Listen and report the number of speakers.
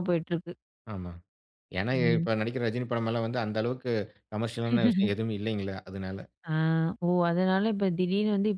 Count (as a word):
two